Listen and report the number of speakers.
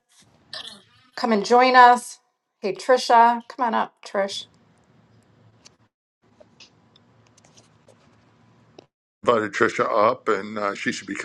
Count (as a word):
two